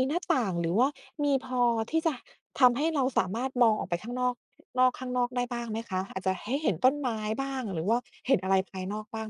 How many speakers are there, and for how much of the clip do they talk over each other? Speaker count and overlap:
one, no overlap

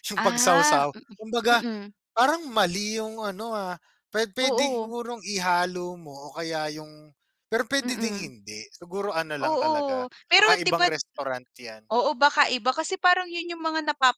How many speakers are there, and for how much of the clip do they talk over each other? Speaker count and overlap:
two, about 21%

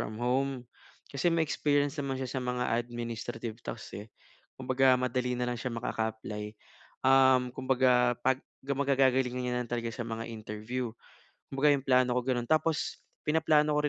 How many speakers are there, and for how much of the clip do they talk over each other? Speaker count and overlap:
one, no overlap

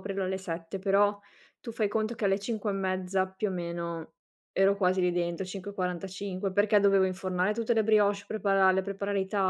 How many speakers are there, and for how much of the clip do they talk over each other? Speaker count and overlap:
one, no overlap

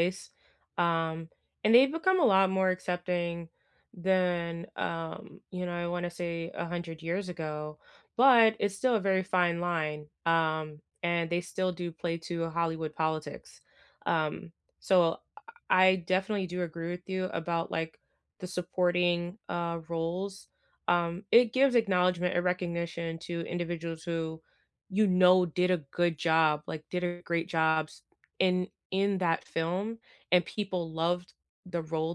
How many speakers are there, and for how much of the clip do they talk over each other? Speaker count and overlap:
one, no overlap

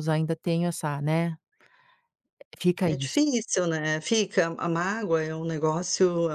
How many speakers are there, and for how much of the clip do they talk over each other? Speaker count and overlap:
two, about 4%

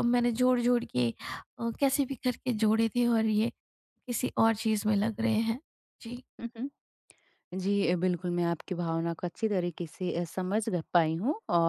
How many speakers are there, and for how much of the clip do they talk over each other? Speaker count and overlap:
two, no overlap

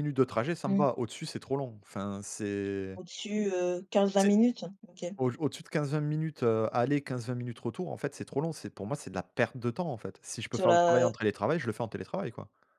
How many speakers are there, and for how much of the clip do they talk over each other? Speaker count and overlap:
two, about 7%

